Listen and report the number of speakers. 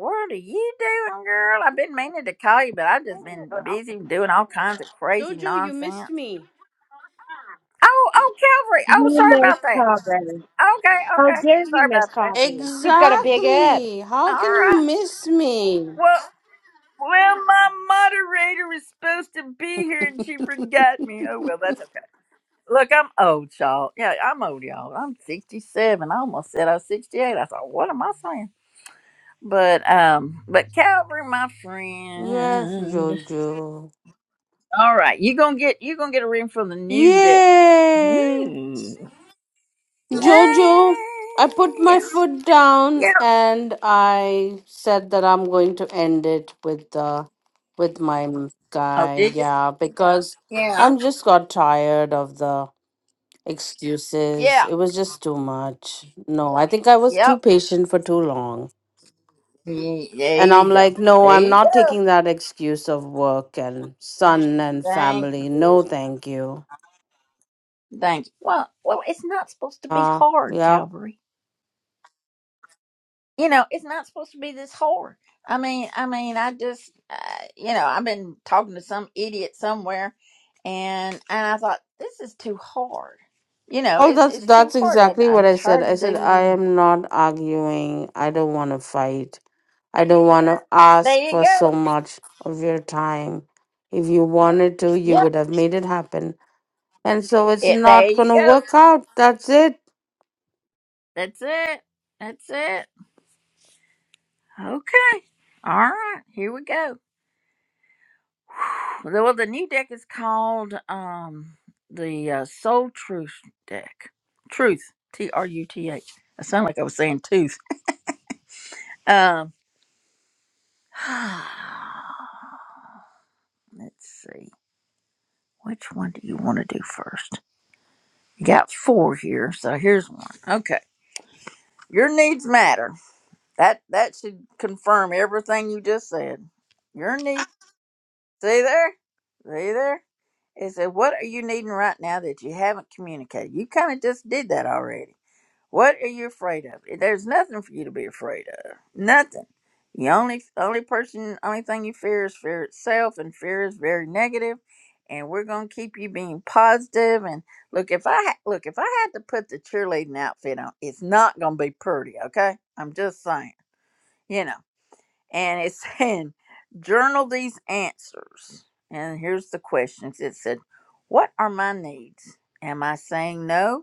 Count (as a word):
three